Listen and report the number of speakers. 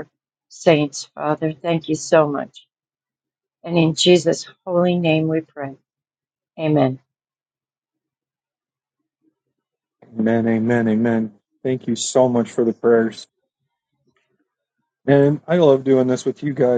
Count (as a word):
two